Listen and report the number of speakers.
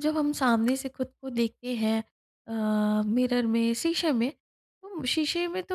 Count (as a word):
one